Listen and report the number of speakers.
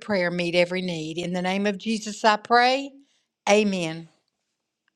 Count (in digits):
1